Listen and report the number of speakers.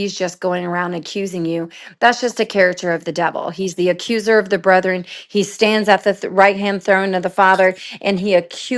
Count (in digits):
1